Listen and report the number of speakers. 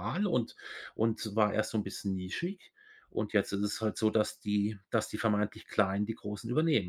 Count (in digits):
1